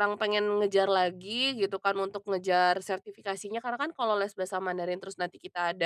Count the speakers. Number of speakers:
1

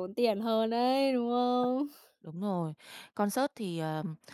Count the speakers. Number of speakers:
2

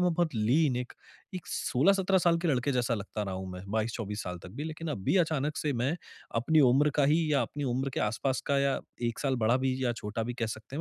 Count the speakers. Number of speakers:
1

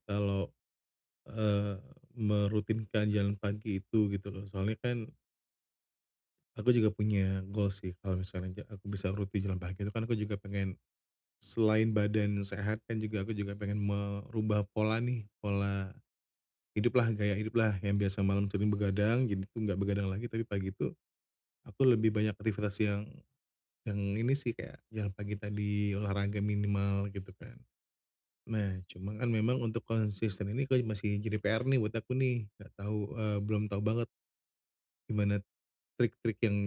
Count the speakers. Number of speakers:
1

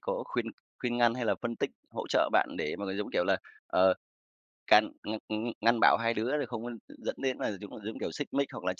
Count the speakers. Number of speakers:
1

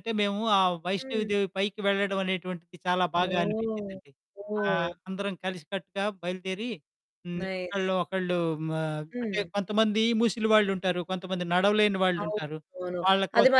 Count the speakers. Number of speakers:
2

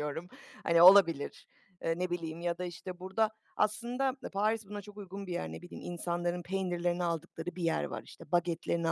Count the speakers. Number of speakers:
1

